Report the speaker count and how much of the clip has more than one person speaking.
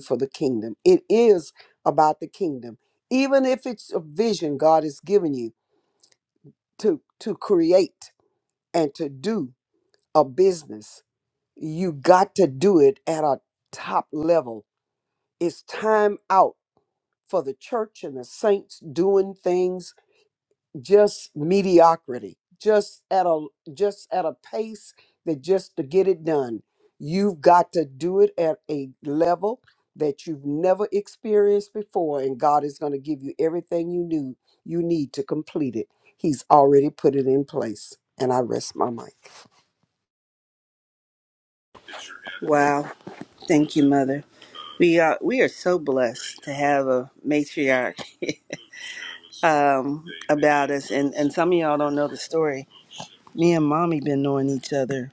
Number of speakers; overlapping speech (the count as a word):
two, no overlap